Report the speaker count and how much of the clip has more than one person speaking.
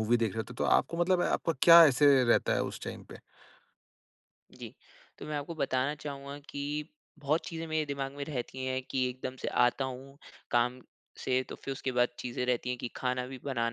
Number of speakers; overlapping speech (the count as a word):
two, no overlap